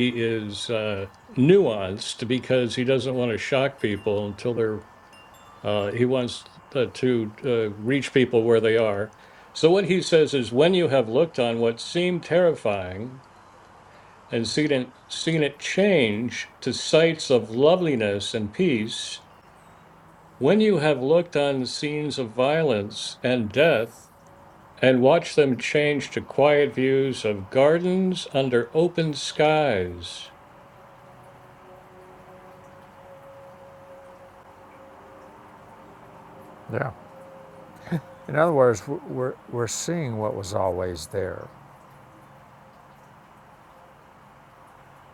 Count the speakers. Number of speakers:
two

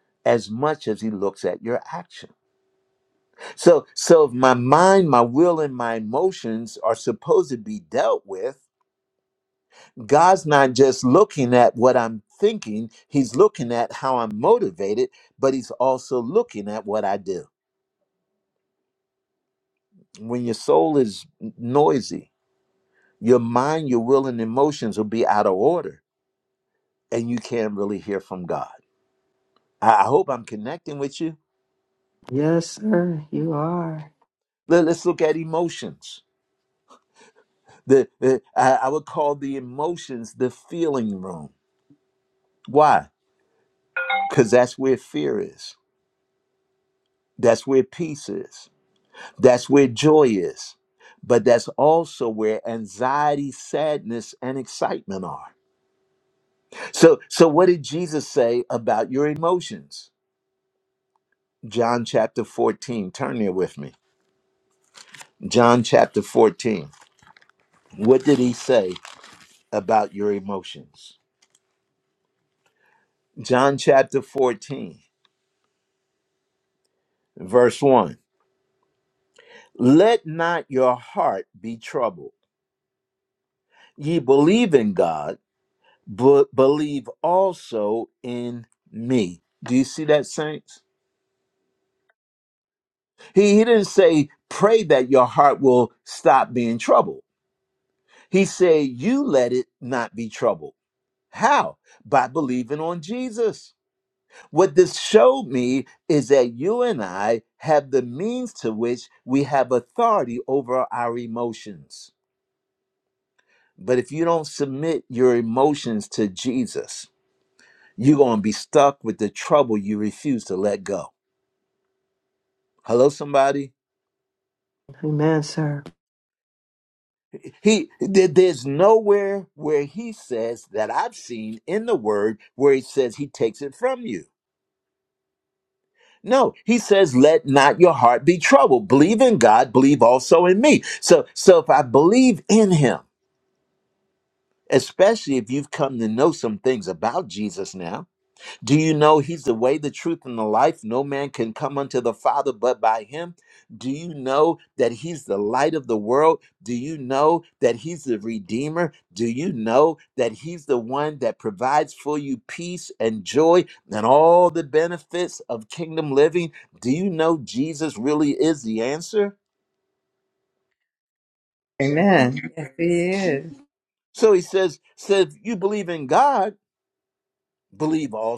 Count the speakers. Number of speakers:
three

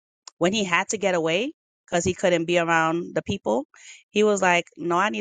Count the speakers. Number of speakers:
one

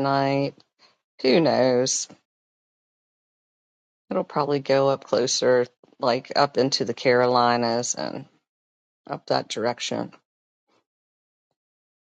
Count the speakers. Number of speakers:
one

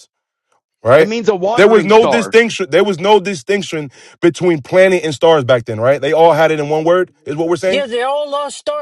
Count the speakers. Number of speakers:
three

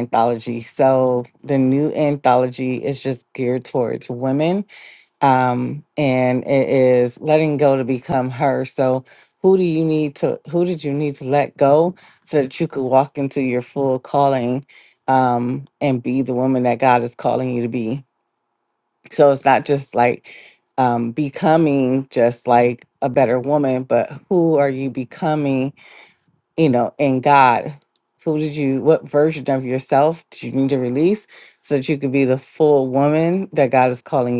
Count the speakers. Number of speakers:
one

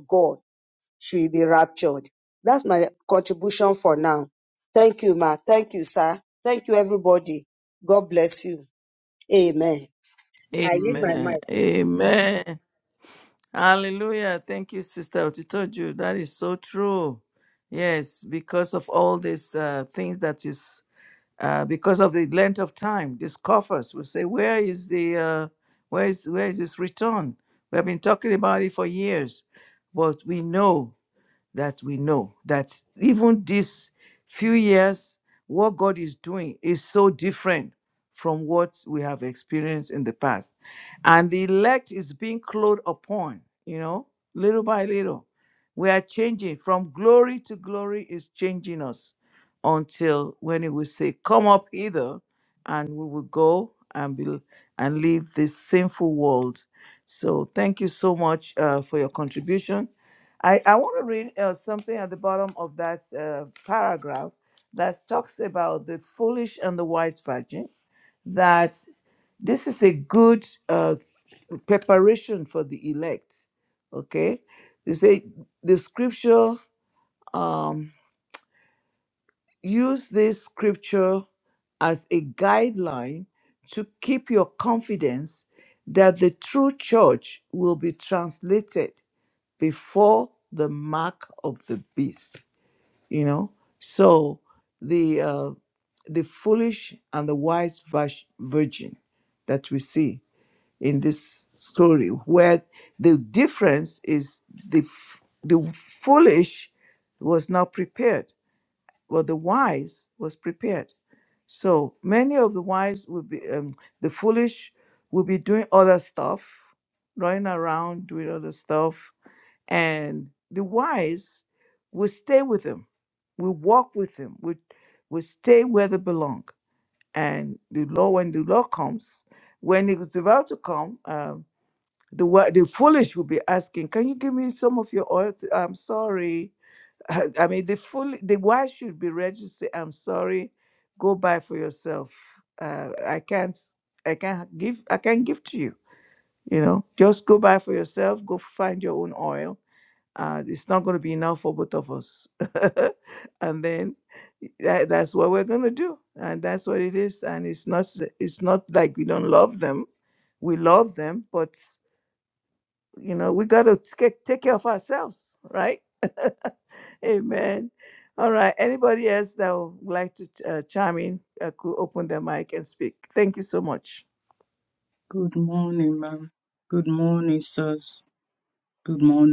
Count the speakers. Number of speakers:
three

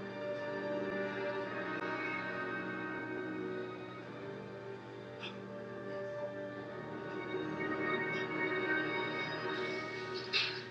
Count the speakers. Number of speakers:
zero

